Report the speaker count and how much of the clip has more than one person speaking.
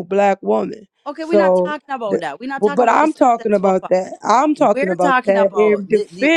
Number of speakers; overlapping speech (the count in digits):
2, about 61%